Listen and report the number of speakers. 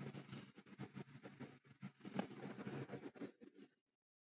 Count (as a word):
zero